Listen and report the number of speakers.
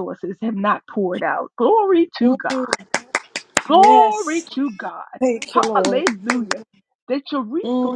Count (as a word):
two